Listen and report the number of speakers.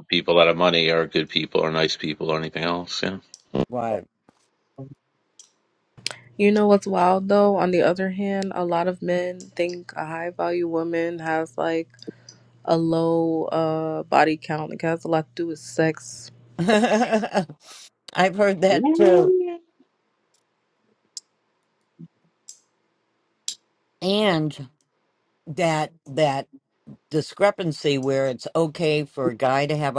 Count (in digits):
3